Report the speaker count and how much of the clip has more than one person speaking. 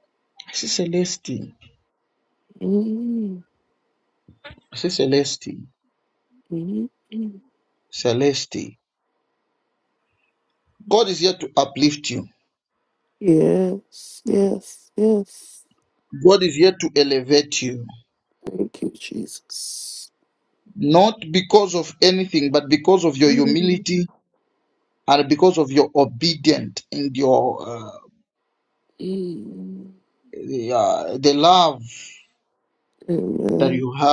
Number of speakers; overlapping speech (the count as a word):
two, about 1%